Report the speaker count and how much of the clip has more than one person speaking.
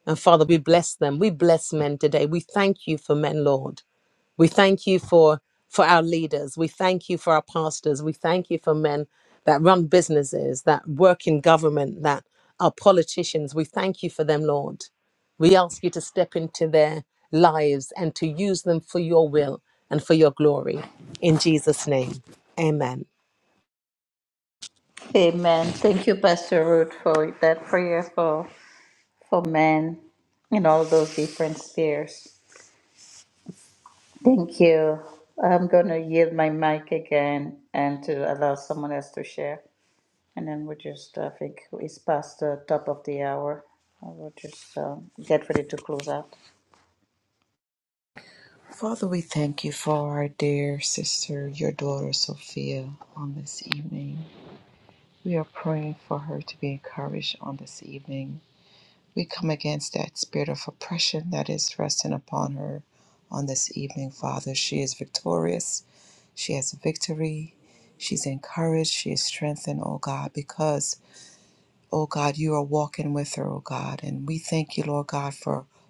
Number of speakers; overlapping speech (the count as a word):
three, no overlap